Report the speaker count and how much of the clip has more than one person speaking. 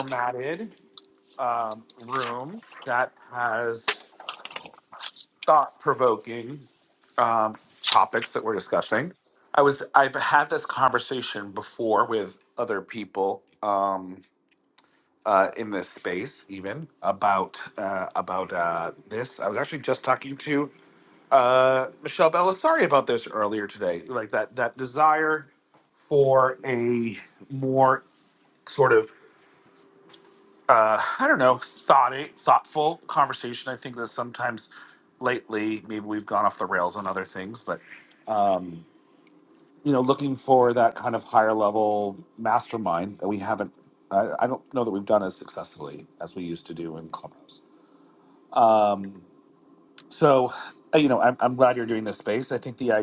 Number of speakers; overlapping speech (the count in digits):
1, no overlap